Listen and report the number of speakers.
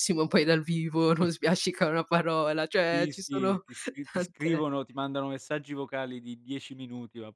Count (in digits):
2